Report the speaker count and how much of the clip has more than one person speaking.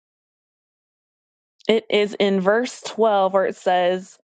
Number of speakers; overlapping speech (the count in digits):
1, no overlap